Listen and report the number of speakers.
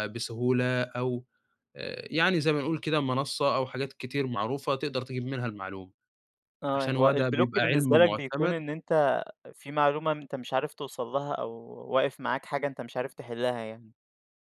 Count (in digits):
2